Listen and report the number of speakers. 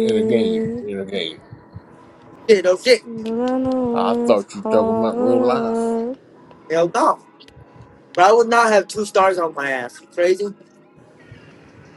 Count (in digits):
3